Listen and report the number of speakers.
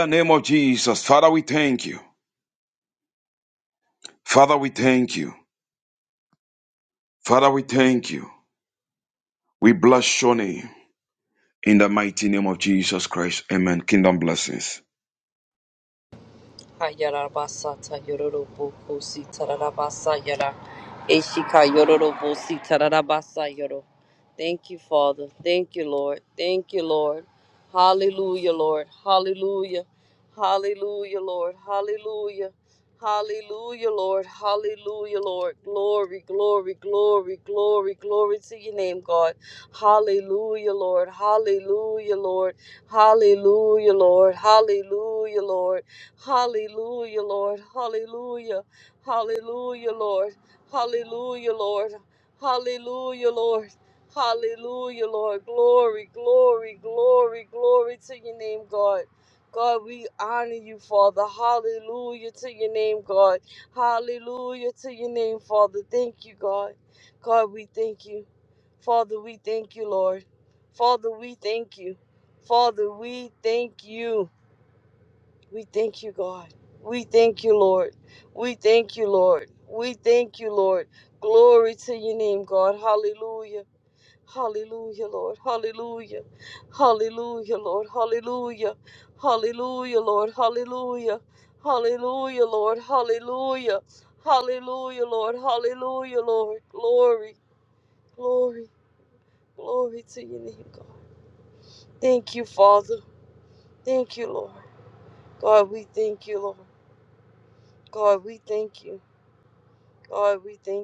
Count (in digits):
2